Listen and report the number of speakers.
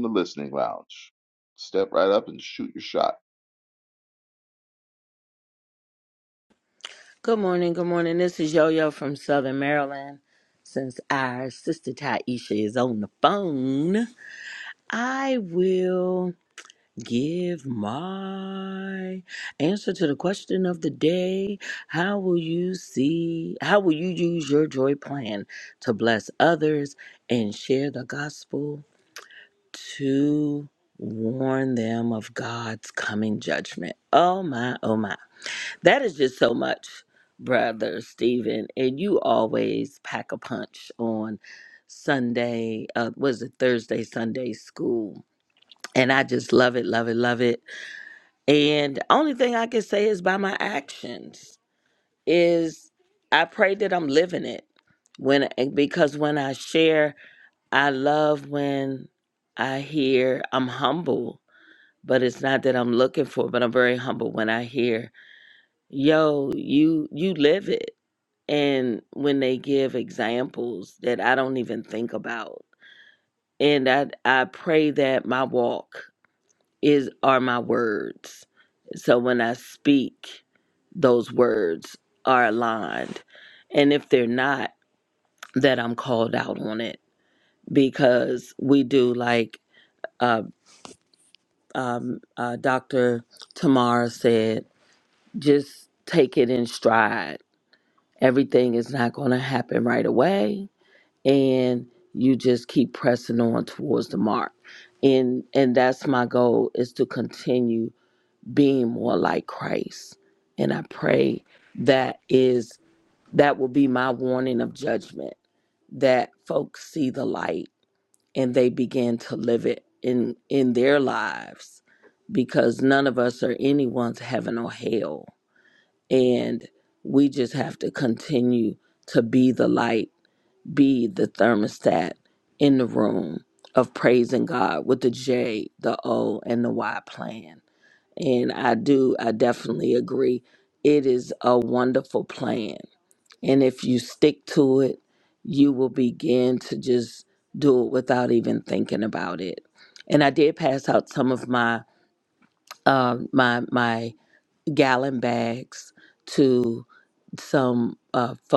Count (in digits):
2